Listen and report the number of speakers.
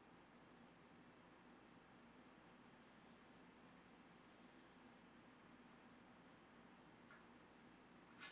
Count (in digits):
0